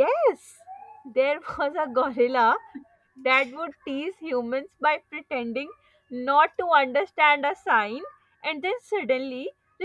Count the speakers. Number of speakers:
1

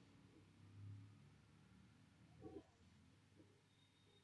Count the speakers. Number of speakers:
0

